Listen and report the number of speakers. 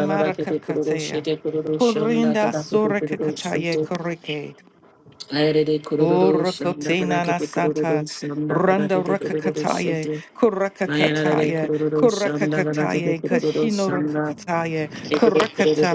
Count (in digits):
2